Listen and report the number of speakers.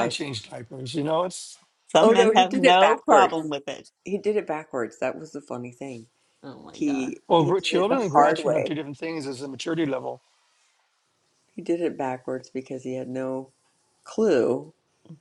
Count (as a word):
three